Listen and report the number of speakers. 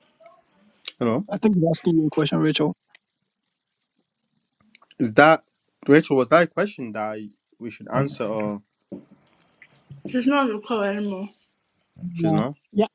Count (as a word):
three